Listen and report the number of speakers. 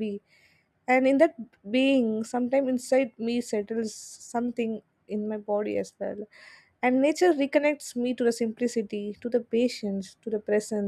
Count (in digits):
1